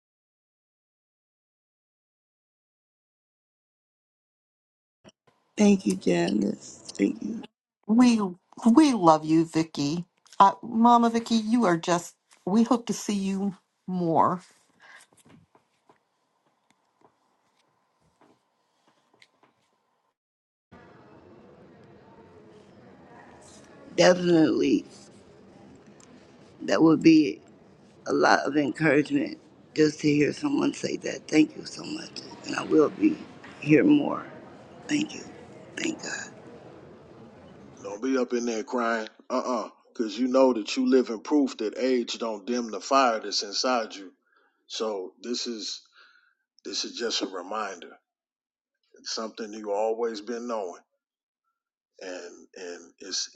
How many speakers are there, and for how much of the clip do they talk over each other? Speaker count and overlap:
three, no overlap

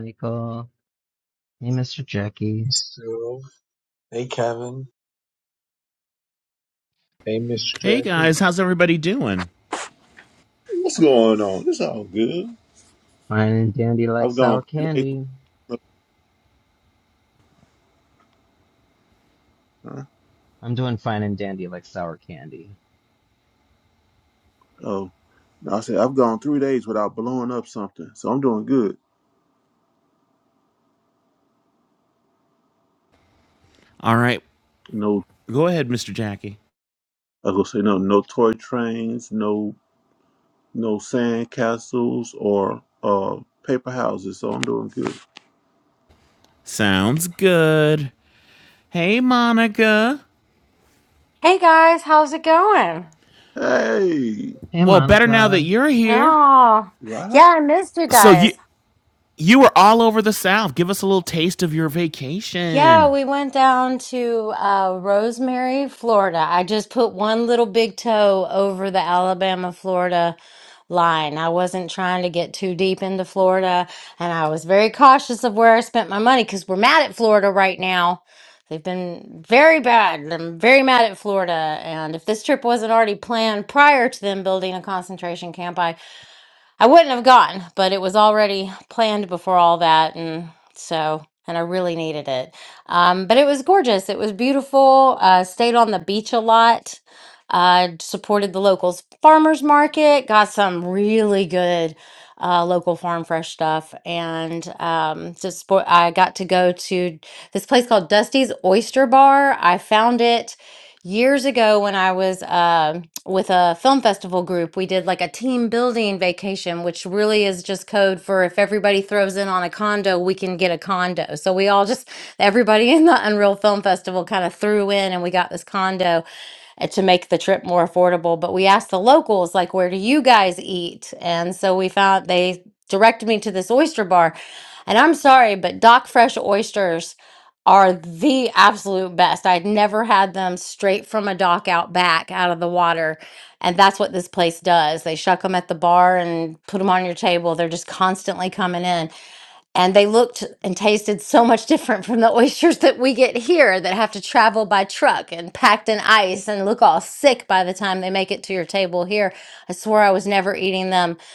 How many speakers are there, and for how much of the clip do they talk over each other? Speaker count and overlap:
five, about 2%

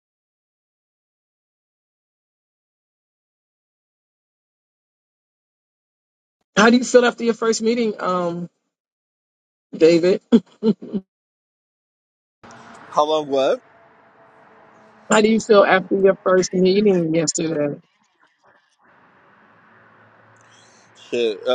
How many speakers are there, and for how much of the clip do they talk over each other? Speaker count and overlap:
two, no overlap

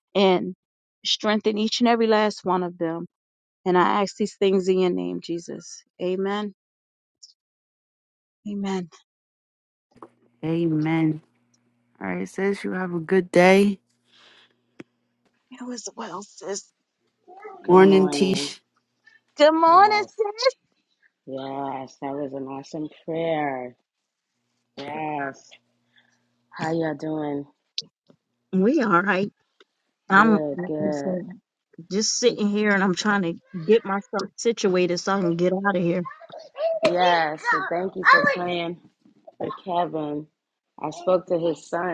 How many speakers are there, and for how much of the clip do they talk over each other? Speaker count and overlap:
three, about 6%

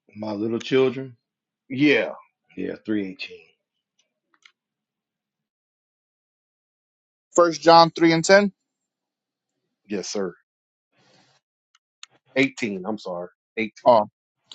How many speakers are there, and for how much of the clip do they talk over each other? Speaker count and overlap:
three, no overlap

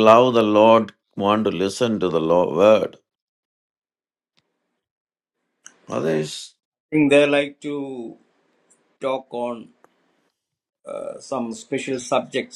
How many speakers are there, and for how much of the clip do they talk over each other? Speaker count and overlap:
two, no overlap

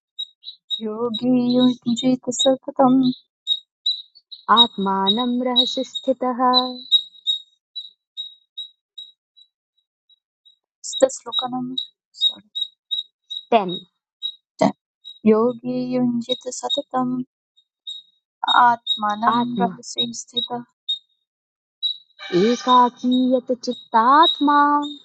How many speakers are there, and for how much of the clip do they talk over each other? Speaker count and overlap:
two, about 2%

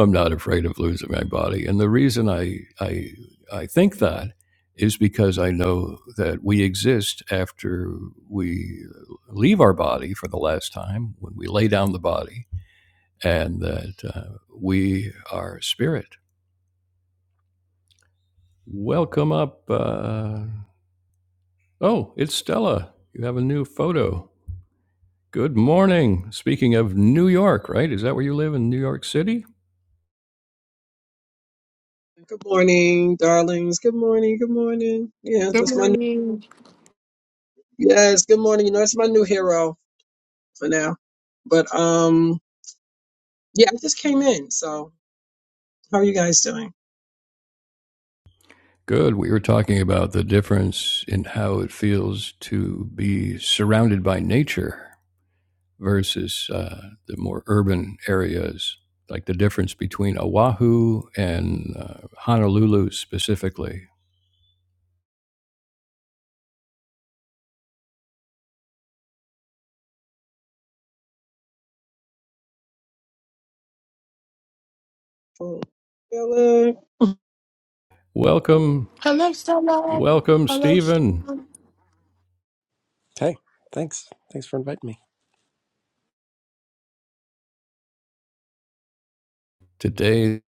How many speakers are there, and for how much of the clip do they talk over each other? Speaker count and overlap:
four, about 1%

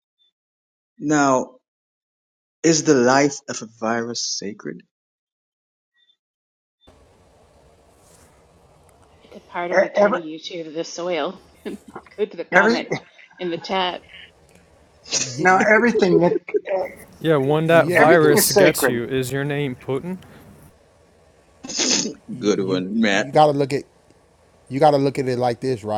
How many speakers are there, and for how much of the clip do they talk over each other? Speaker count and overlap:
five, about 11%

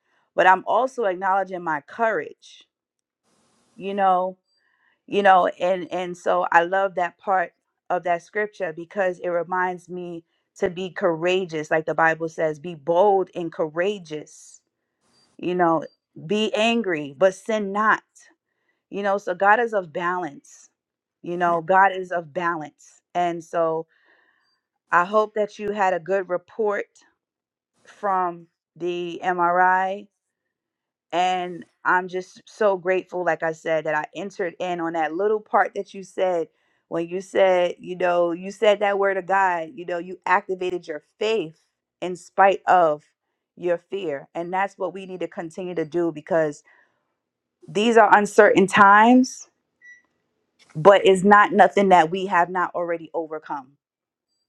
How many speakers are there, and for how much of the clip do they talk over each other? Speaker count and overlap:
one, no overlap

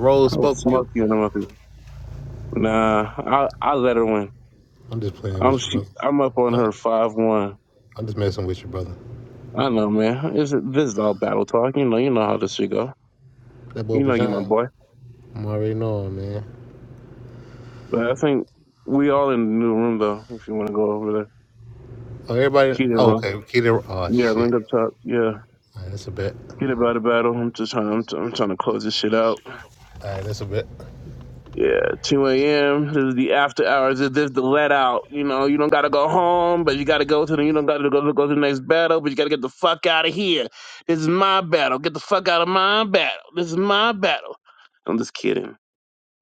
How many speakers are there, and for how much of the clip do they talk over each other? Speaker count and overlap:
two, about 6%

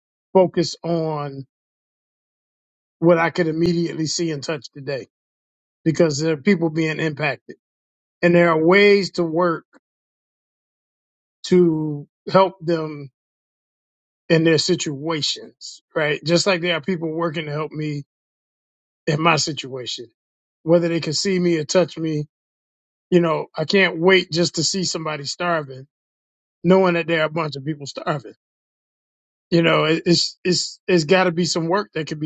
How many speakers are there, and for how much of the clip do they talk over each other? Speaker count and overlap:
one, no overlap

